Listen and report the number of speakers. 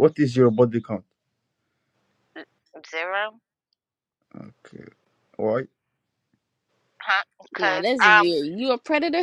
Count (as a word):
three